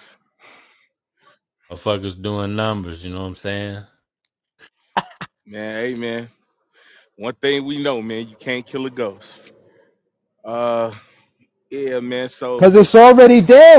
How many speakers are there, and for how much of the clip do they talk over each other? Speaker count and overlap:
3, about 1%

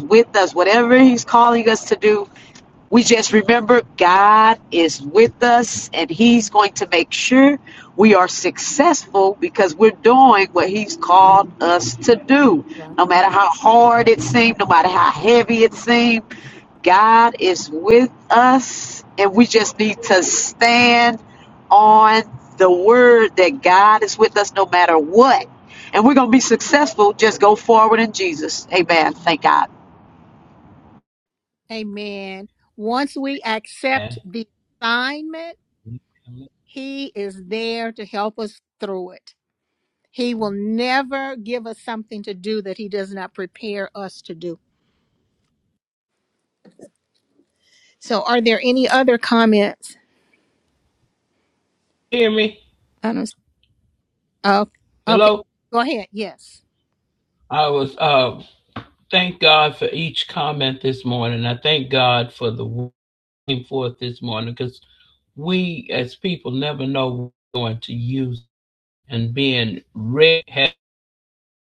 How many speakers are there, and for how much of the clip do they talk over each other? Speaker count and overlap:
3, about 1%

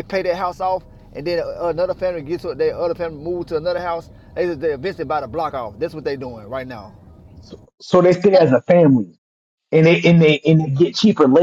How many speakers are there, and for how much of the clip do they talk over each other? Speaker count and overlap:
2, no overlap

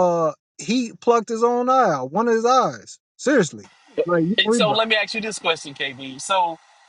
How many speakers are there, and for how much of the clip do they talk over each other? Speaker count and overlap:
2, about 4%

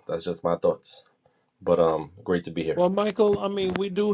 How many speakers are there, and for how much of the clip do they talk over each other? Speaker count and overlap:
2, under 1%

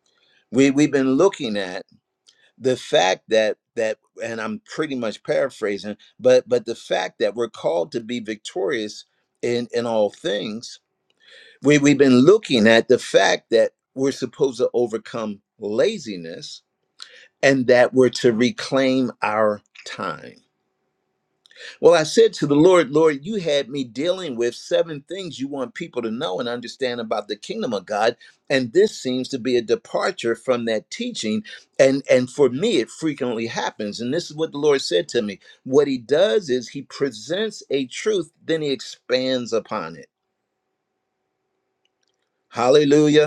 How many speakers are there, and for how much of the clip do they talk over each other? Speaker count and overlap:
1, no overlap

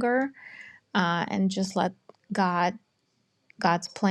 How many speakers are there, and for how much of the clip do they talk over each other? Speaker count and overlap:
1, no overlap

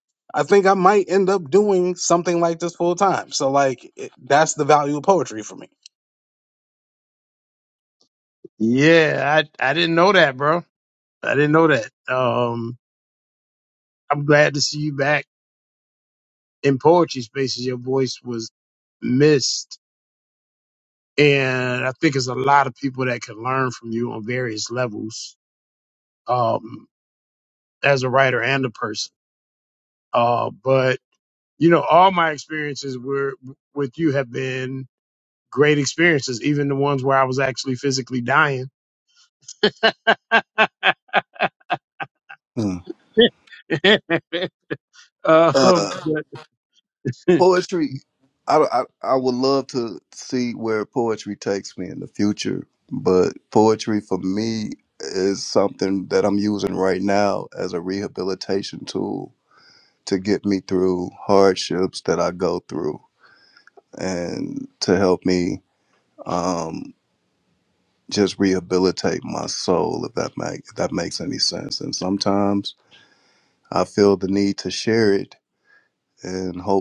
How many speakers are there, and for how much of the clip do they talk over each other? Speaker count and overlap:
3, under 1%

